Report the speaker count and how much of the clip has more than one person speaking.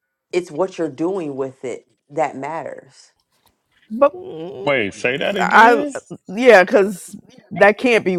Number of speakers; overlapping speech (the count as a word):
three, about 9%